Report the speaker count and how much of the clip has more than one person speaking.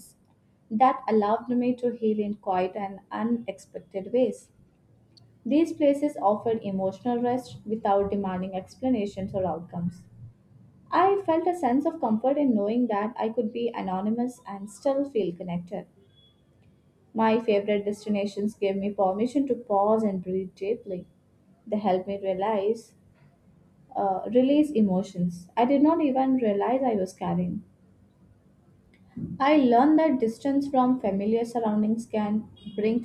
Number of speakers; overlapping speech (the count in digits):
1, no overlap